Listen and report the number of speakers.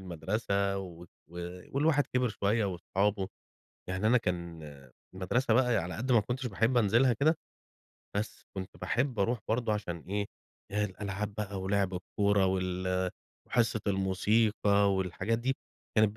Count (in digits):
1